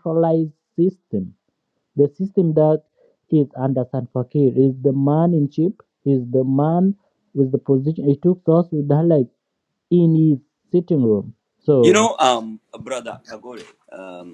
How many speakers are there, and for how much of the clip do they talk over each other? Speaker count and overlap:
2, about 2%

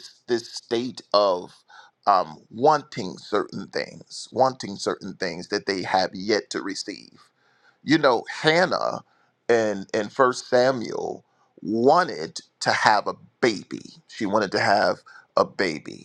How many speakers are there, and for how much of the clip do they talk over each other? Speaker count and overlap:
1, no overlap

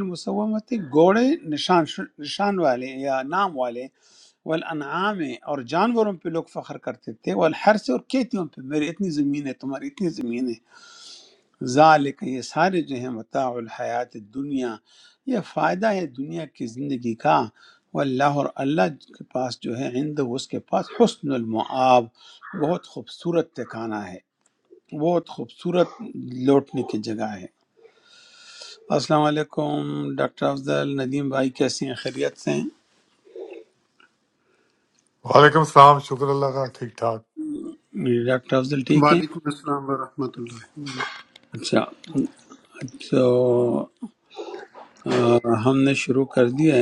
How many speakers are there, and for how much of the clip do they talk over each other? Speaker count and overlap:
3, about 1%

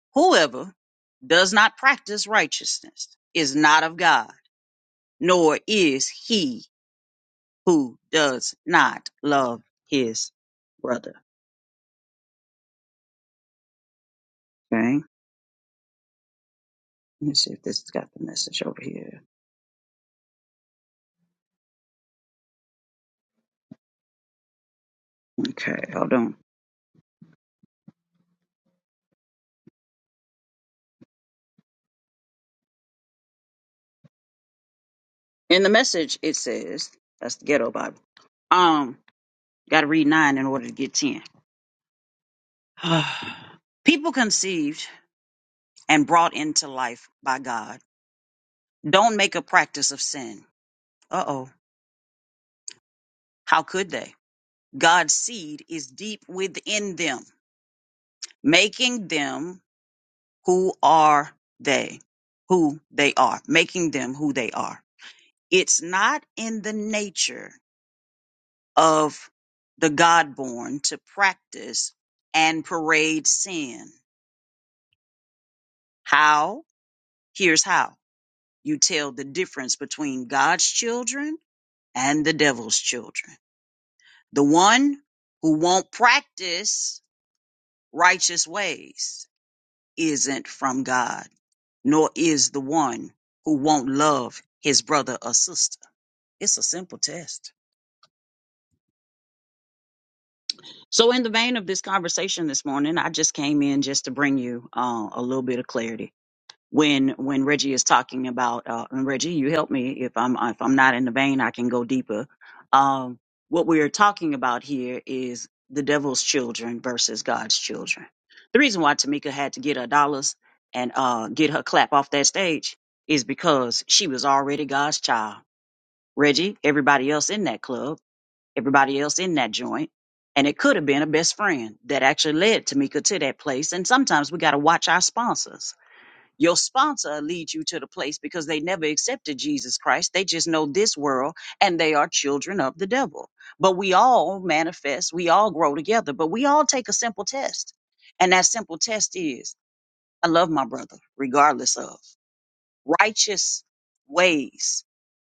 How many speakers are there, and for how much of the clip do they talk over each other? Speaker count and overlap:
1, no overlap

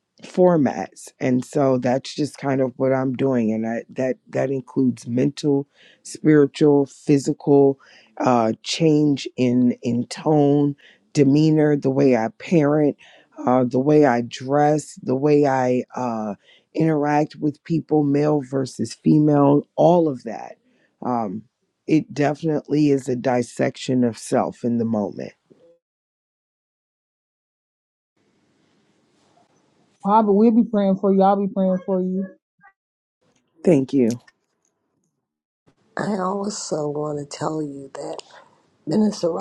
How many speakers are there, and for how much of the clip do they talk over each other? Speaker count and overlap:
3, no overlap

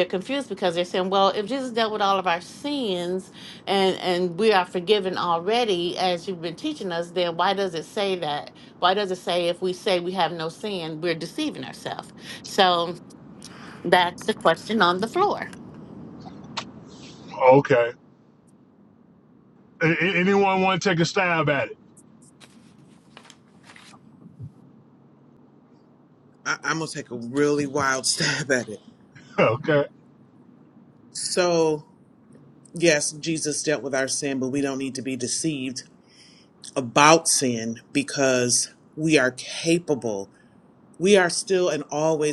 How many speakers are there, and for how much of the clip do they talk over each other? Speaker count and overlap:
3, no overlap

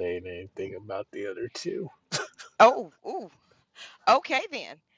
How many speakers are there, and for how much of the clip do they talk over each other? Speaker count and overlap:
2, no overlap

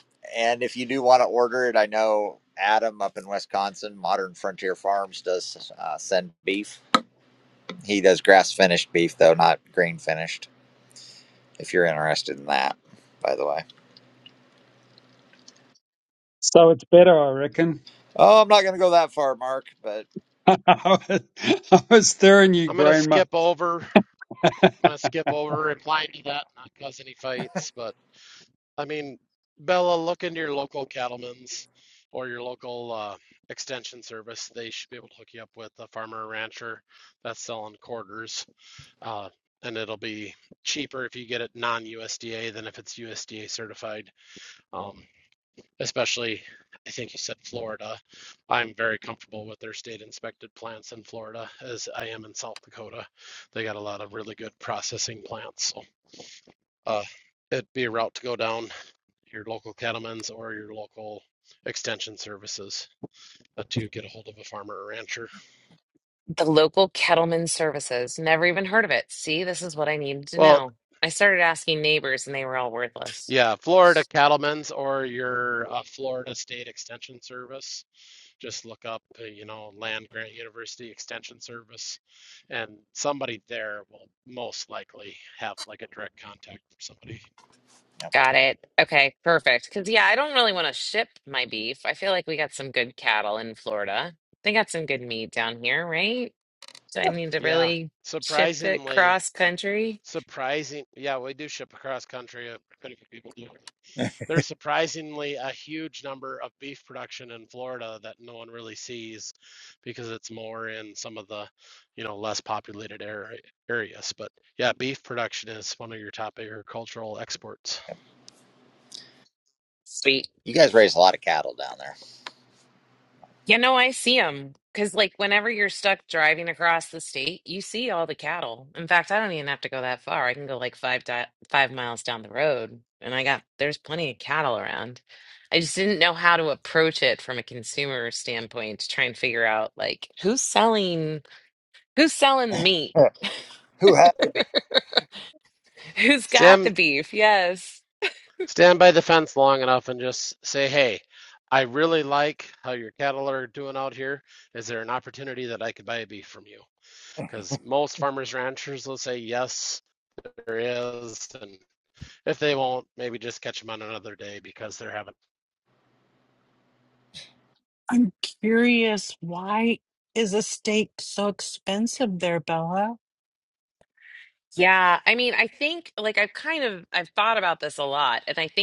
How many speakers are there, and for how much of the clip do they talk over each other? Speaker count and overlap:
5, about 1%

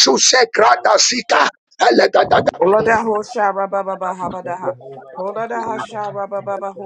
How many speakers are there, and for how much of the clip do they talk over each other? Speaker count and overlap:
3, about 51%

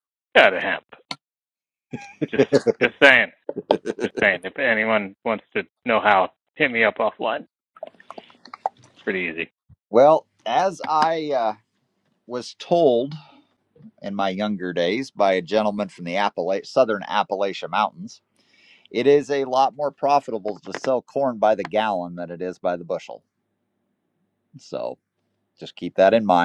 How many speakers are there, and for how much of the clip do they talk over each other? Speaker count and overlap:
2, no overlap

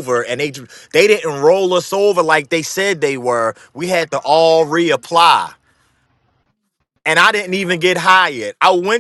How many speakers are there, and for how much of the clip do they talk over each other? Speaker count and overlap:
1, no overlap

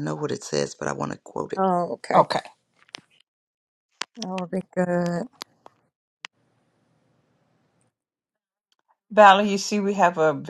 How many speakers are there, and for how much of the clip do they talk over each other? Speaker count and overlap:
3, about 1%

